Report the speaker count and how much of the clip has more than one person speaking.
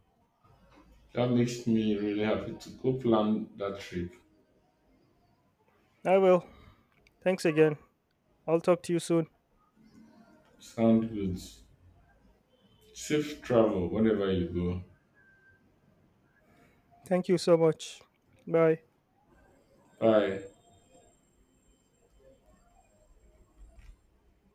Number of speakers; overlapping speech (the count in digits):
2, no overlap